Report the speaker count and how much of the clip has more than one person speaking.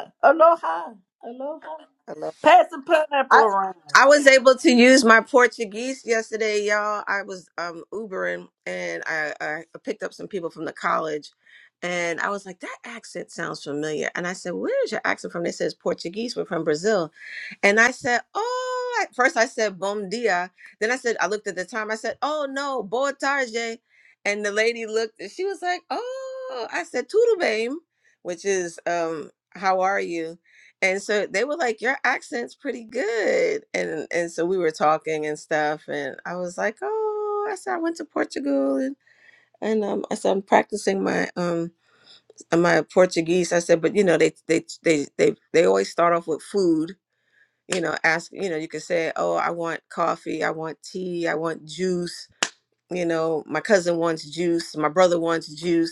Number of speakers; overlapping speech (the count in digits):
2, under 1%